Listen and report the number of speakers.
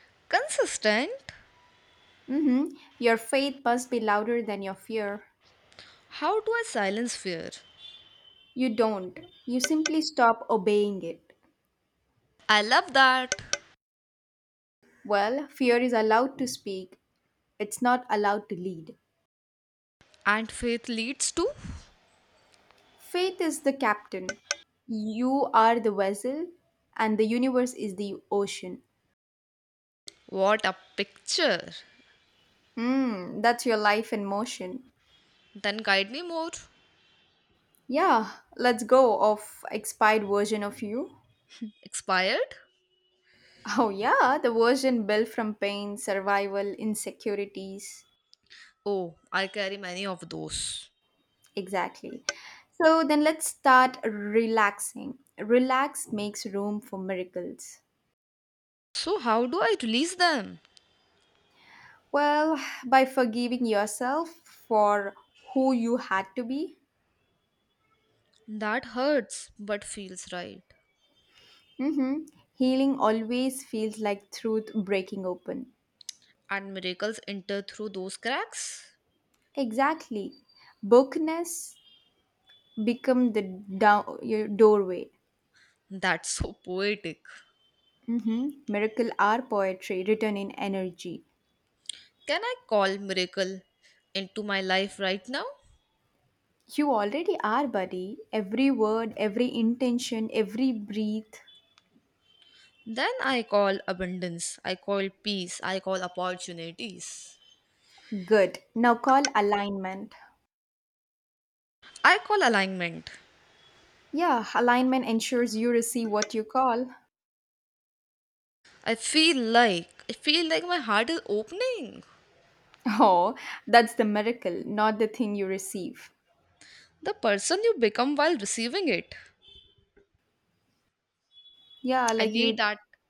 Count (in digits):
2